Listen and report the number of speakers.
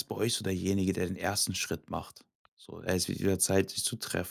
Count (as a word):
one